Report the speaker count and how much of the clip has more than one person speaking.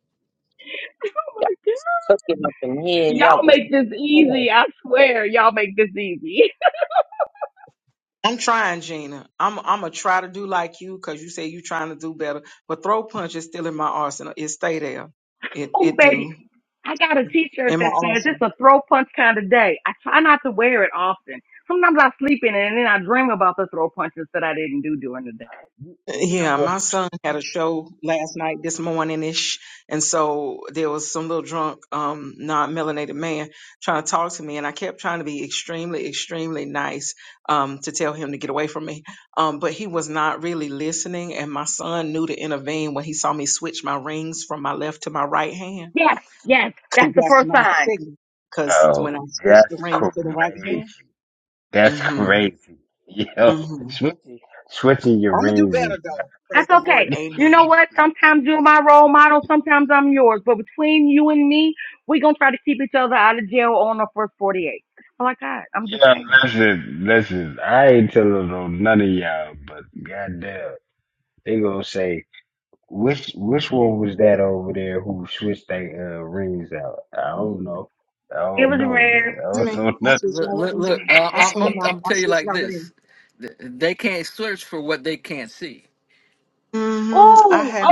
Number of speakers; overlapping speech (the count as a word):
five, about 15%